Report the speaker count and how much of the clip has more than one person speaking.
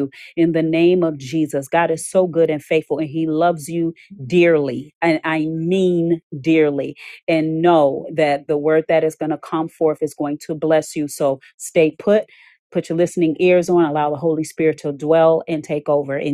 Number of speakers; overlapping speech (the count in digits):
1, no overlap